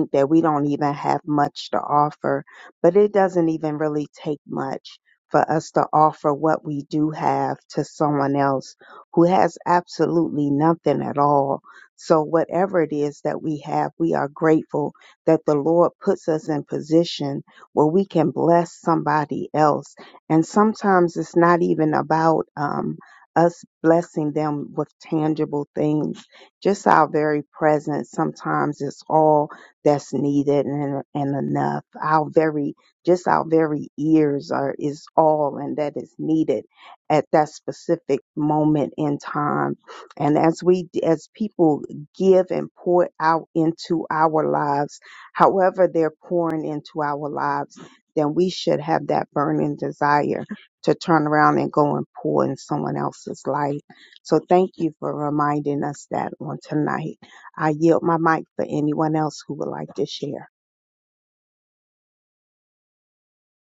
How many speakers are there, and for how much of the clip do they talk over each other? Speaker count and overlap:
1, no overlap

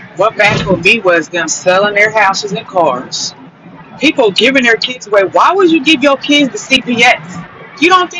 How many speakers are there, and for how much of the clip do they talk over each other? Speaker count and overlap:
1, no overlap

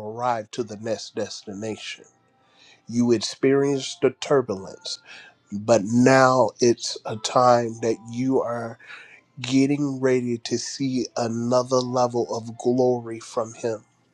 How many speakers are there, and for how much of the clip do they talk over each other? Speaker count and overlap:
1, no overlap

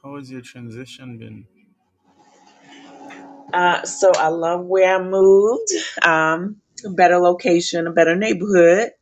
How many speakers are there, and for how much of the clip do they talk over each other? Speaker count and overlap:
2, no overlap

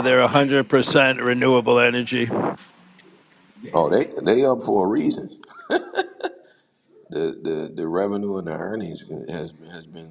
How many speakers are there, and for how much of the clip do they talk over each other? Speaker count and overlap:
2, no overlap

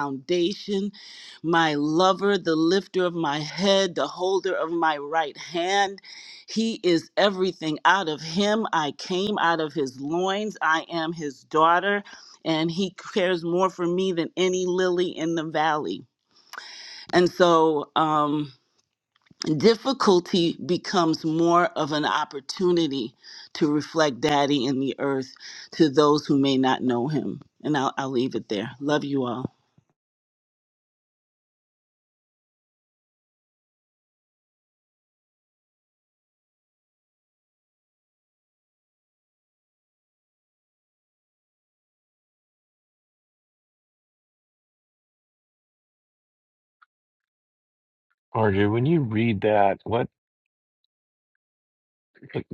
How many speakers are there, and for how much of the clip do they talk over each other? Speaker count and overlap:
2, no overlap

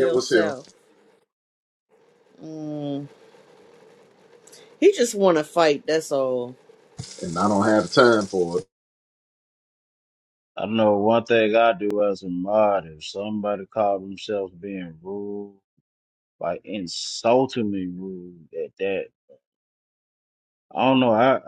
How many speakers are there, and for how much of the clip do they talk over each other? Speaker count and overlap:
3, about 3%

